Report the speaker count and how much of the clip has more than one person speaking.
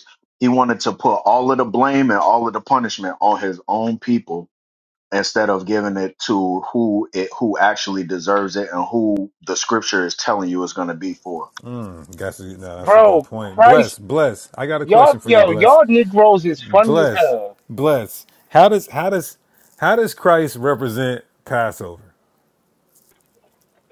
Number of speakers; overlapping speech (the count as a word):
three, about 9%